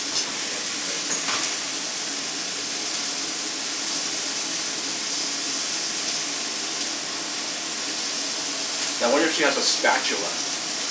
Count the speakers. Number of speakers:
1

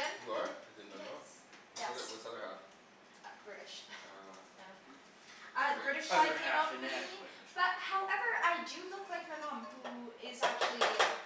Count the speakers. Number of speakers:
3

